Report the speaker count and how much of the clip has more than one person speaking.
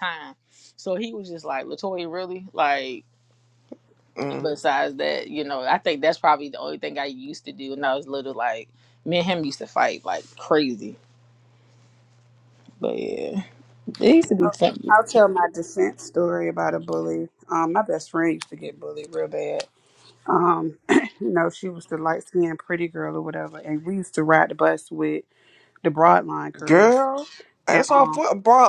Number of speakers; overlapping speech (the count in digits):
3, about 3%